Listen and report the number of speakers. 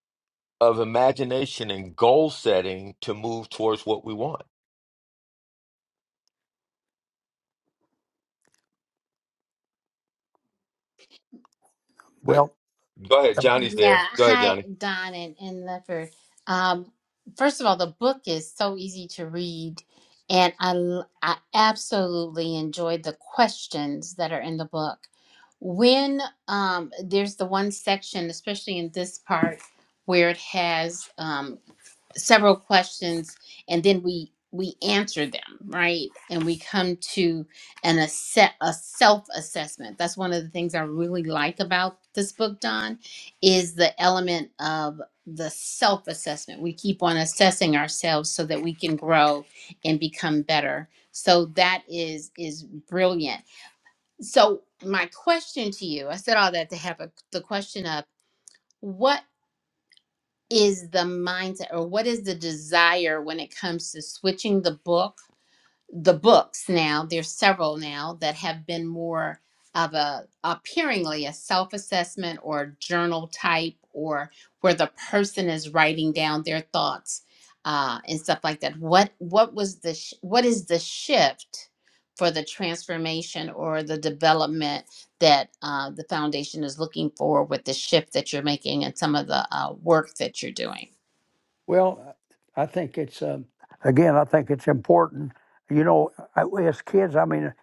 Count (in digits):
3